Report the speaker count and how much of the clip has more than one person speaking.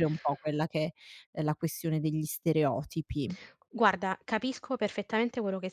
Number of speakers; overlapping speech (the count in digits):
2, no overlap